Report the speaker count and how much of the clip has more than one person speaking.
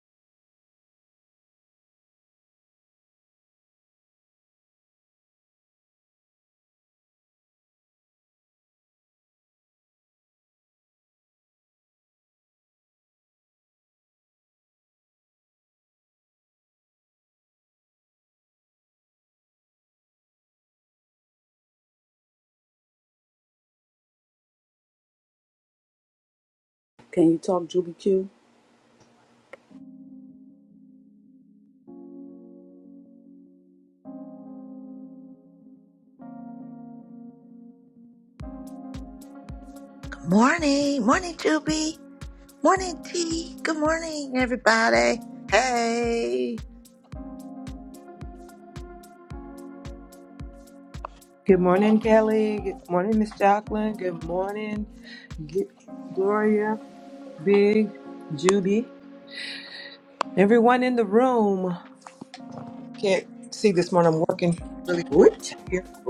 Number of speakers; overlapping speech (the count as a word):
three, under 1%